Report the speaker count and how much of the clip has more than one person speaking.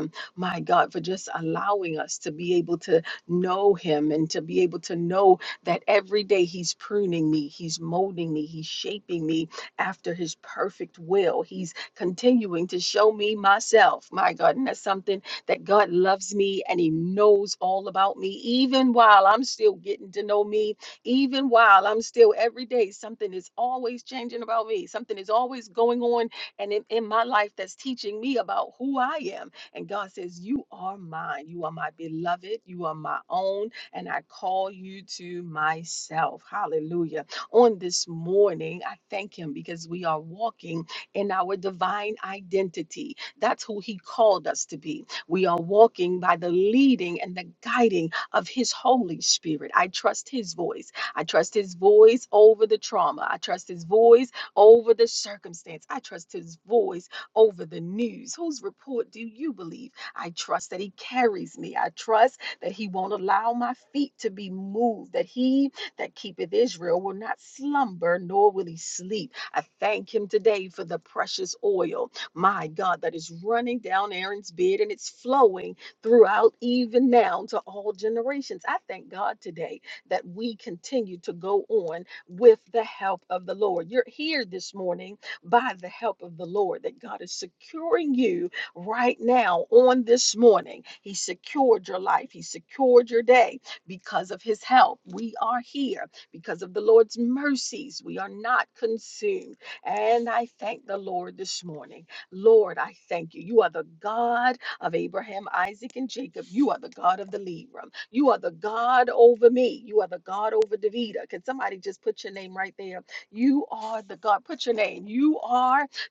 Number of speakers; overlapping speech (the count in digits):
1, no overlap